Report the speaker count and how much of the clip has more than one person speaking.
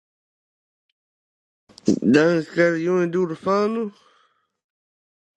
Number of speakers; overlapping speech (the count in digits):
1, no overlap